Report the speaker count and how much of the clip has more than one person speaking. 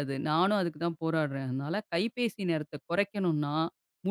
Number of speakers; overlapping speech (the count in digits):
1, no overlap